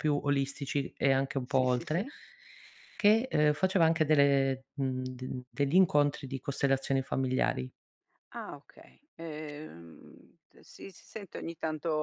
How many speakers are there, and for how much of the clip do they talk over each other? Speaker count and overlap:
2, about 4%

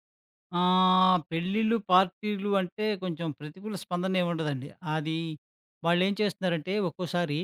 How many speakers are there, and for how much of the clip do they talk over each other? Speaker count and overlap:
1, no overlap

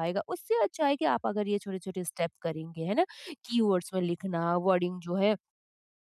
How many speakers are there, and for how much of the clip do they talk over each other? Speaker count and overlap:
1, no overlap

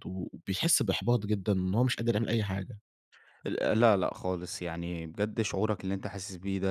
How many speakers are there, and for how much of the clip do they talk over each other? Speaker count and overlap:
2, no overlap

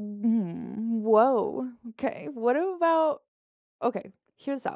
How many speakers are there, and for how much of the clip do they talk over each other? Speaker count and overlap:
1, no overlap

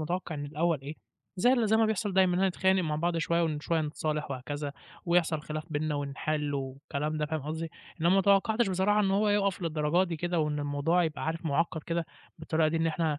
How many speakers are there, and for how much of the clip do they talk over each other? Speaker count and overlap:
1, no overlap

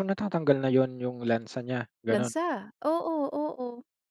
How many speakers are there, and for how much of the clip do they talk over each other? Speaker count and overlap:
2, about 6%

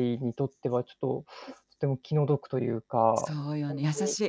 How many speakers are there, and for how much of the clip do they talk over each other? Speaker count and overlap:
2, about 13%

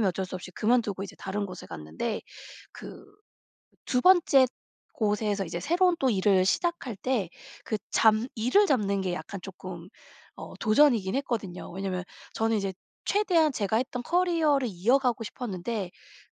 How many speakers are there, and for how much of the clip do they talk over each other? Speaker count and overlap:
1, no overlap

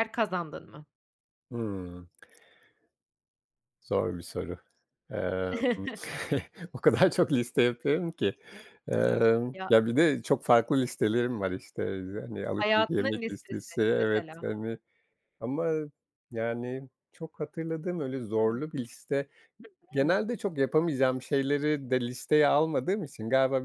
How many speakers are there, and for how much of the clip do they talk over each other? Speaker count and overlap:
2, about 9%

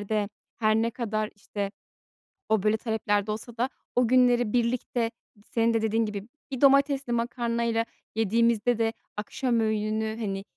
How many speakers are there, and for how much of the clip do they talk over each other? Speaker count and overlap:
1, no overlap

